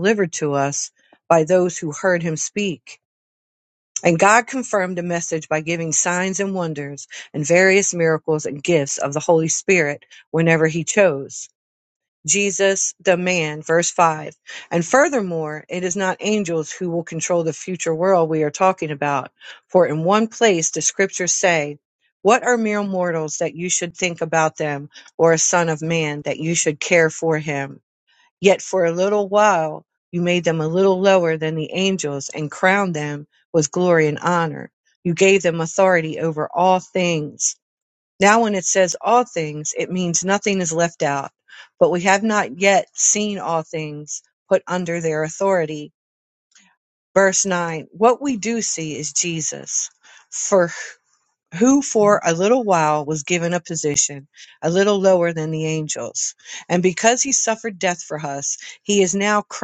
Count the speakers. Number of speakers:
one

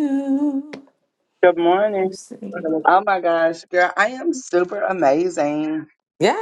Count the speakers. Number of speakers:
two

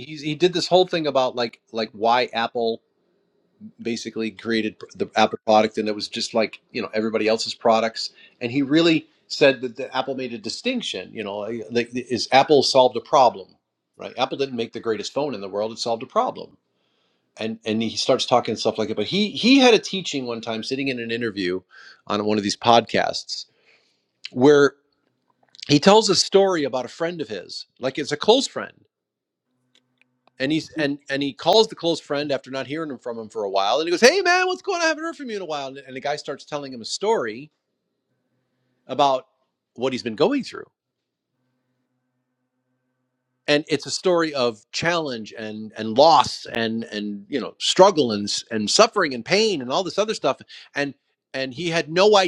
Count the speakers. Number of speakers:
one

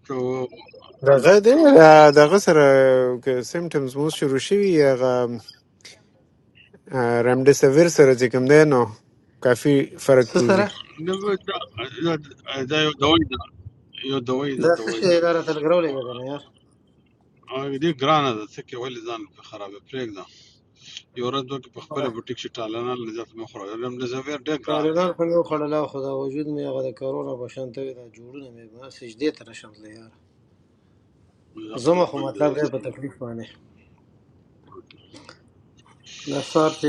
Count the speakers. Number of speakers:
three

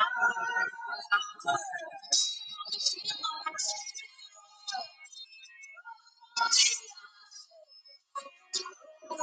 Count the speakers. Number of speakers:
zero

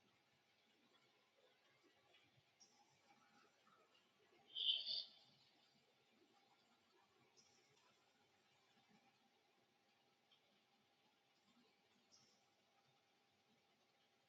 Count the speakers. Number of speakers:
zero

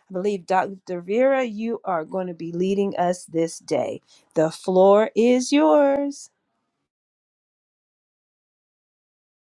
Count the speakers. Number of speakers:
one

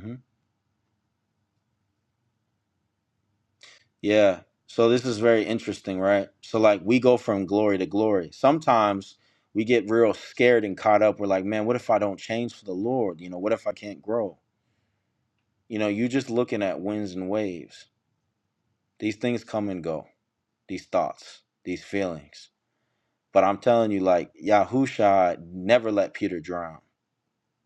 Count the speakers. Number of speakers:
one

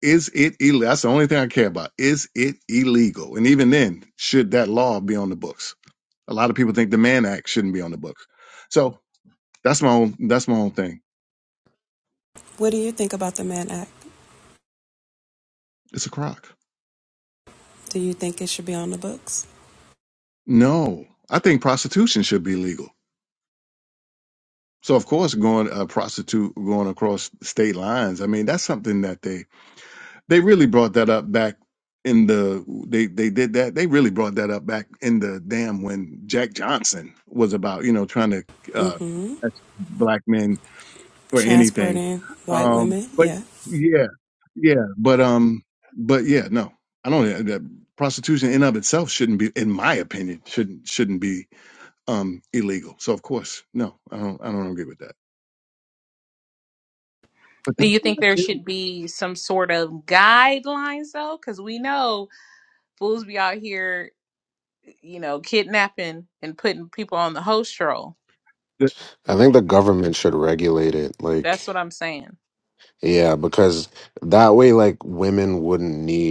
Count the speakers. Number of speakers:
four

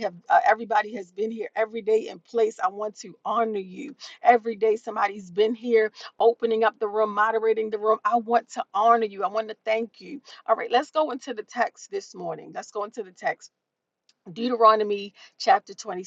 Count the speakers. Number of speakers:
one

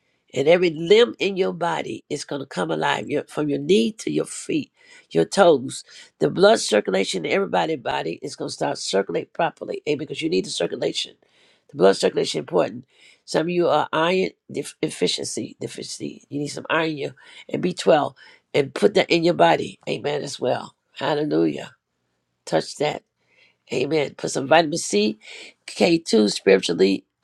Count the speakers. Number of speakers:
one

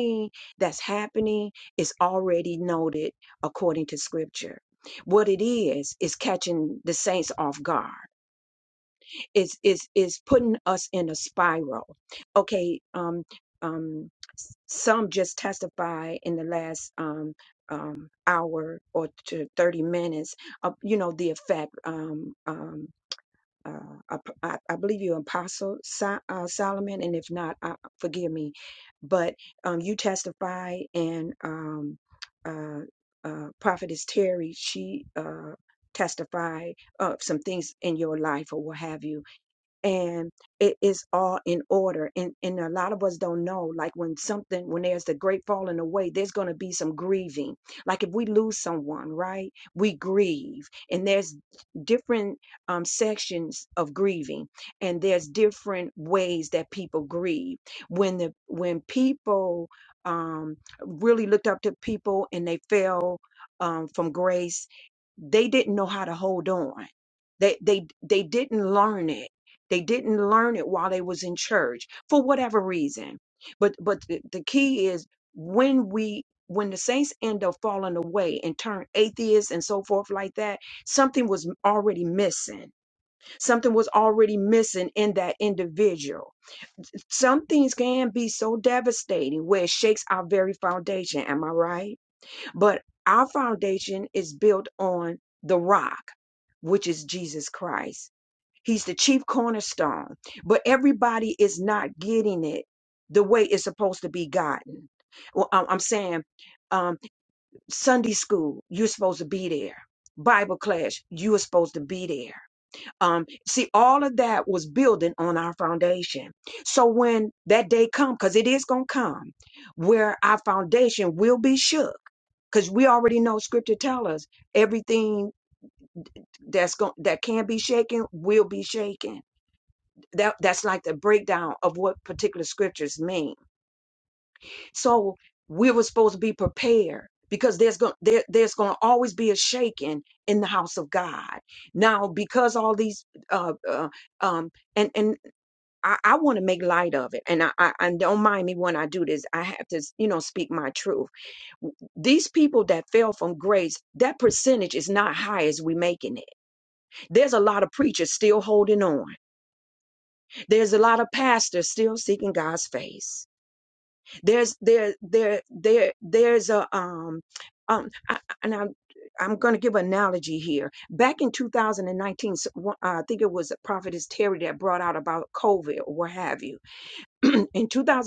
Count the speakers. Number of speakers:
one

